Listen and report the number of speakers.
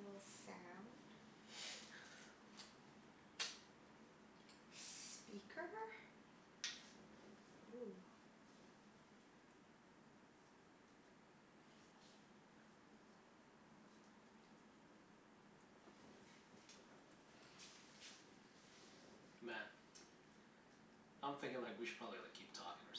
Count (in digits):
2